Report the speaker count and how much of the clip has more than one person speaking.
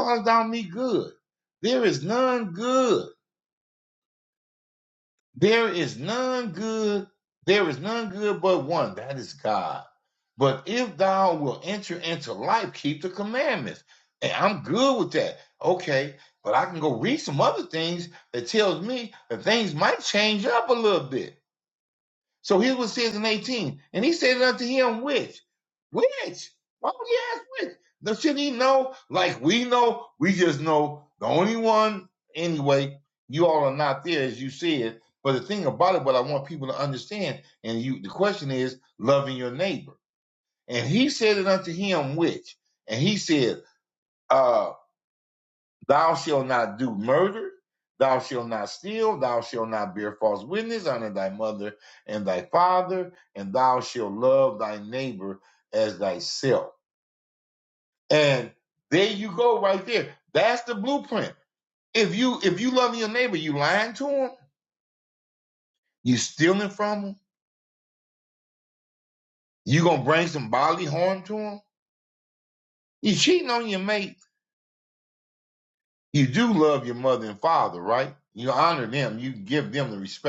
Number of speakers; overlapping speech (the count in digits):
1, no overlap